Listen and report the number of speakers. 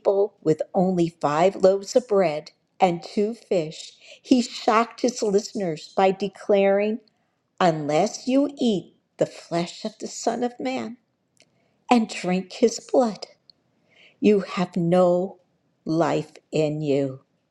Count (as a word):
one